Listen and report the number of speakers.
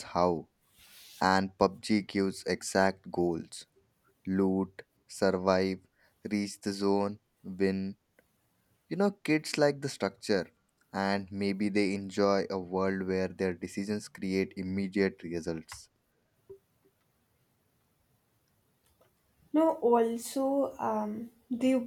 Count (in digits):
2